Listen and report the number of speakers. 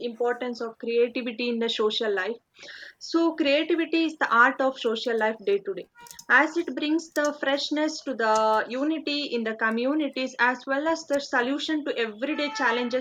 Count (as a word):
one